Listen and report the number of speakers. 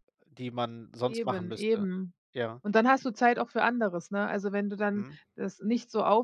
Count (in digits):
2